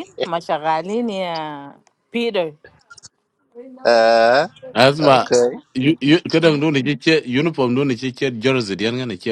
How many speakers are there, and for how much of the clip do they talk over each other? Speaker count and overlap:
3, about 2%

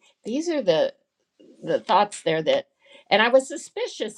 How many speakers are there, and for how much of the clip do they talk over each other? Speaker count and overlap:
1, no overlap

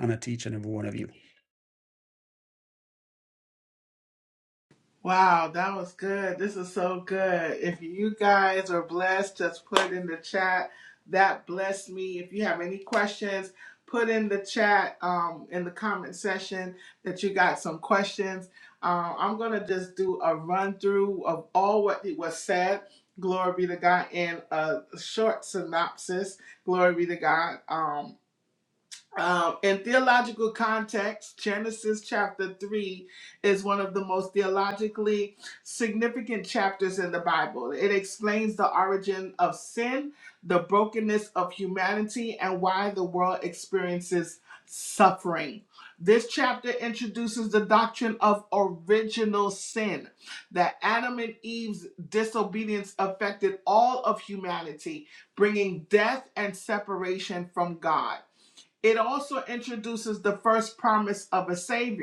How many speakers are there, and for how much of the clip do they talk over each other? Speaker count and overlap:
2, no overlap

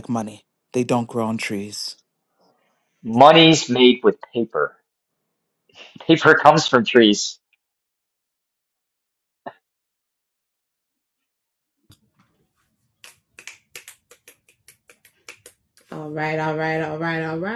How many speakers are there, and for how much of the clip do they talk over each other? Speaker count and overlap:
3, no overlap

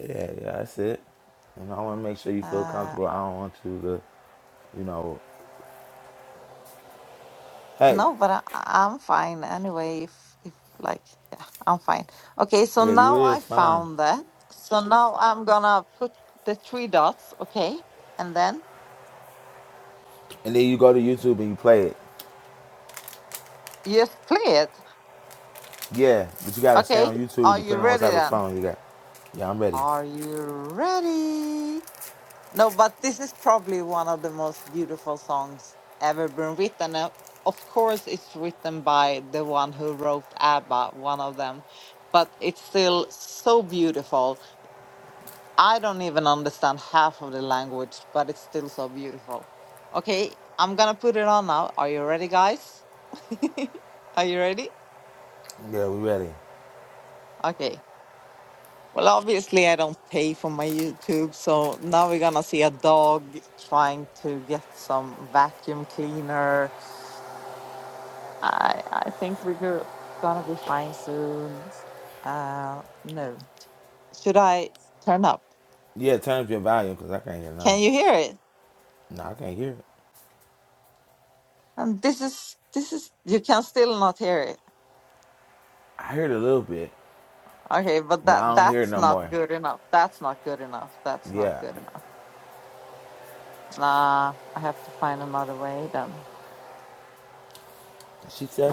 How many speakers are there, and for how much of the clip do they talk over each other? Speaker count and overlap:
2, about 5%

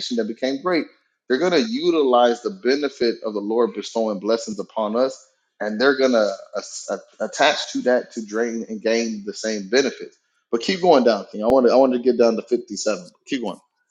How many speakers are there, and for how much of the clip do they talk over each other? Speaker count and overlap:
1, no overlap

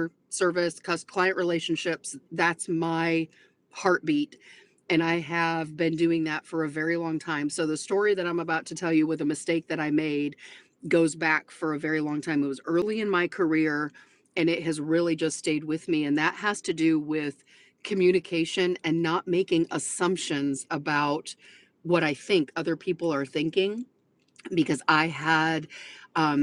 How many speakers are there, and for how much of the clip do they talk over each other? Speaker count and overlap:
1, no overlap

